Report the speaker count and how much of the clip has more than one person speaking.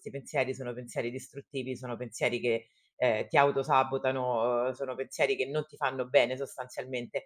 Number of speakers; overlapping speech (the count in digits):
1, no overlap